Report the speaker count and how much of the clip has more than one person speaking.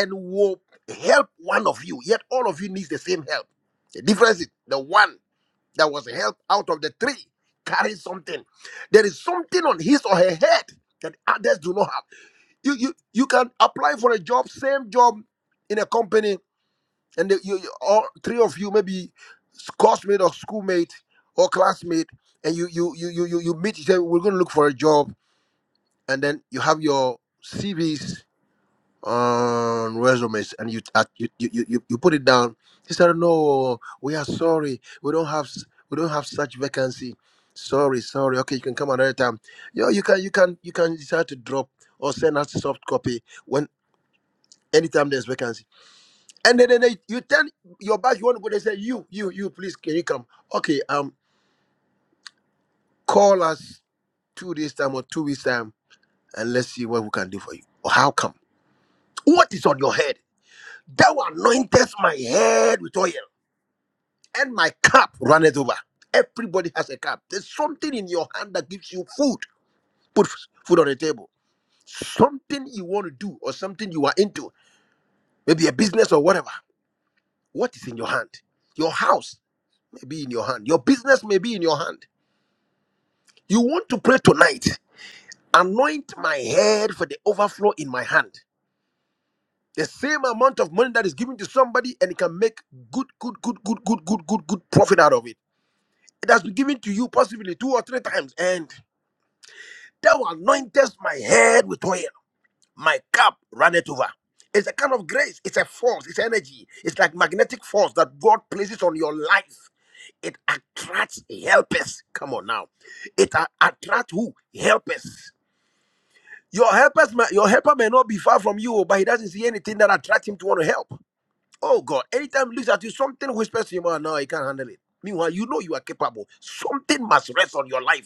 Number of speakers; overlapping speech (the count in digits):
1, no overlap